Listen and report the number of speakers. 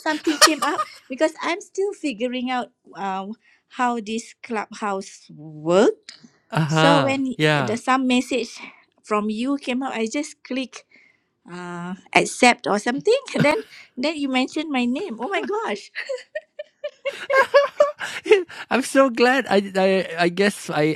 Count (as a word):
two